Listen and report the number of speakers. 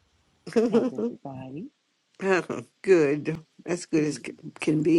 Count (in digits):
2